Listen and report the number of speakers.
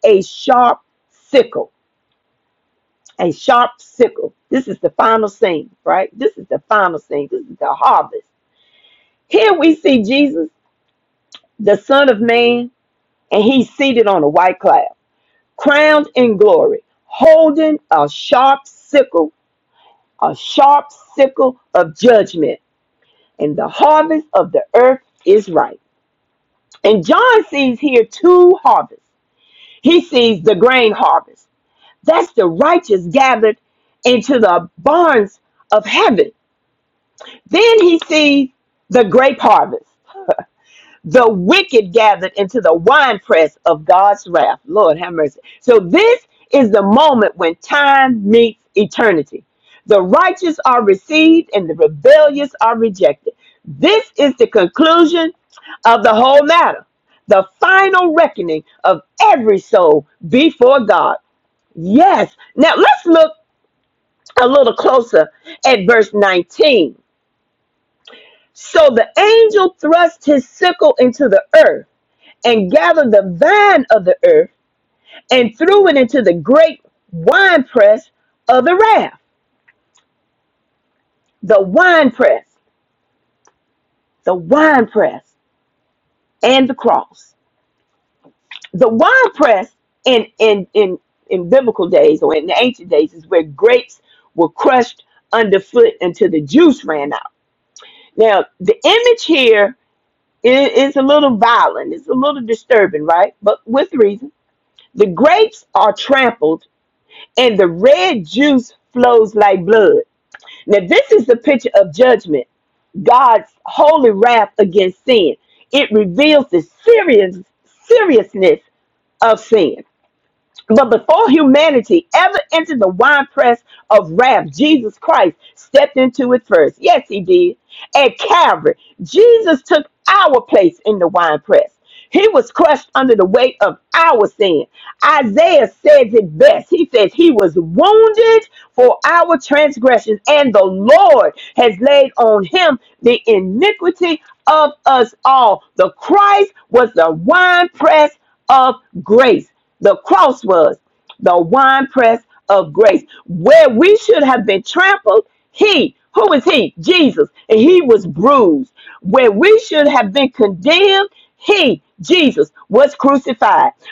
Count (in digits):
1